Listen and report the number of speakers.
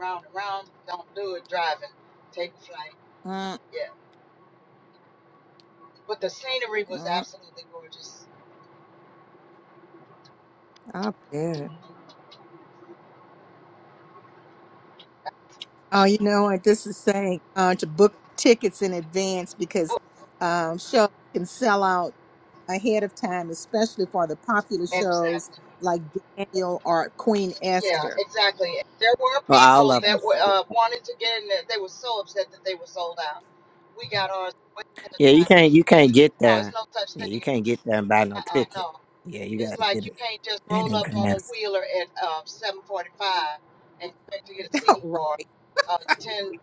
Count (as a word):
three